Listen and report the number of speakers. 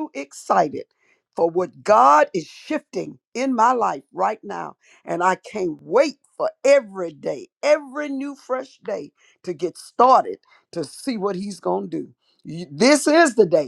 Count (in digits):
1